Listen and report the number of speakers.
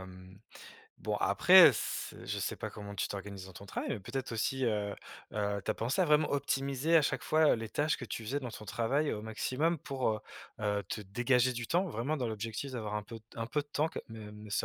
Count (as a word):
one